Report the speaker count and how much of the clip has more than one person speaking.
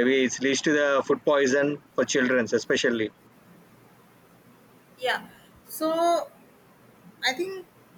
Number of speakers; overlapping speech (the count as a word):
two, no overlap